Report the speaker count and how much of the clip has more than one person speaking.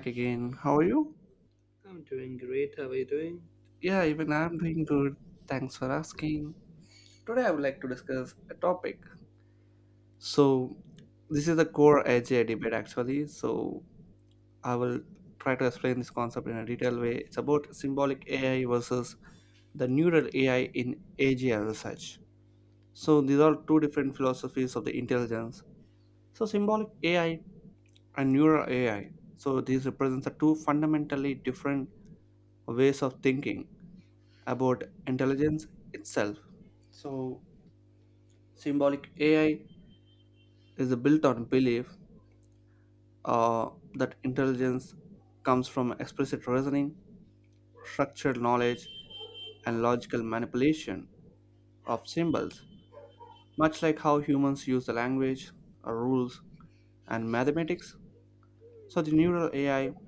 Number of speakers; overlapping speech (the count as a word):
two, no overlap